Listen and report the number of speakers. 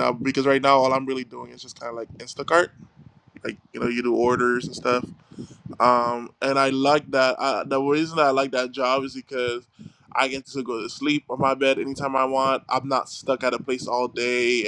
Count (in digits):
1